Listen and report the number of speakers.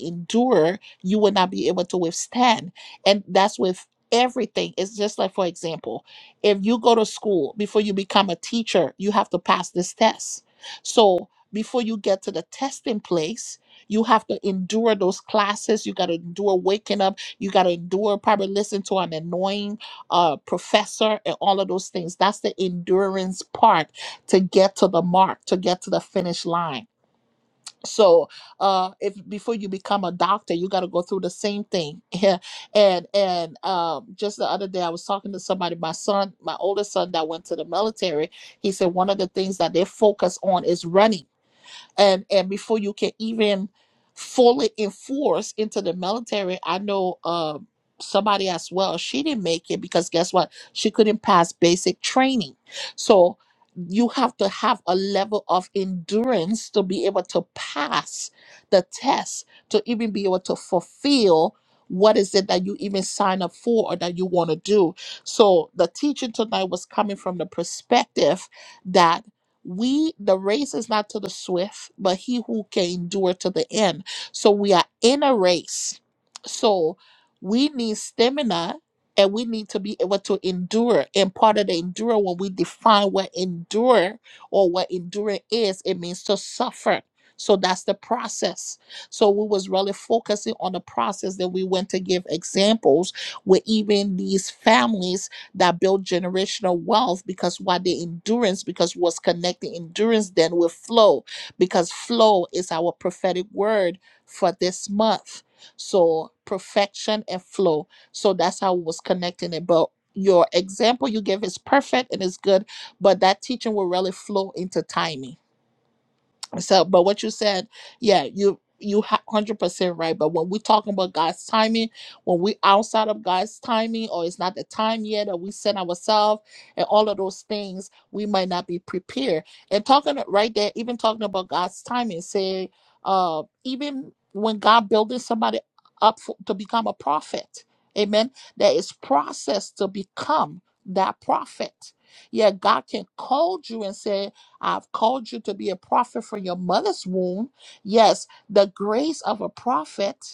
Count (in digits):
1